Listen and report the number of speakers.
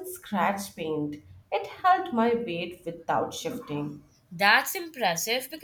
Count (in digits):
2